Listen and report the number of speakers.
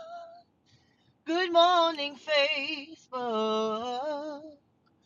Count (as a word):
one